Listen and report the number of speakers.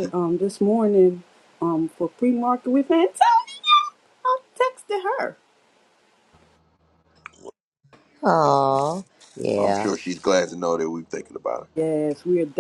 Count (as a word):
three